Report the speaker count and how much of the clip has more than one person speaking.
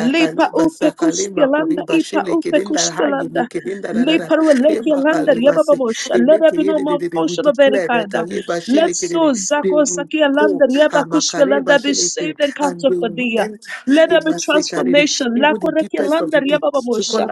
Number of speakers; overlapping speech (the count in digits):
2, about 90%